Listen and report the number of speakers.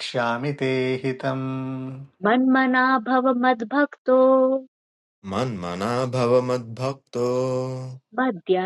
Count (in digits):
3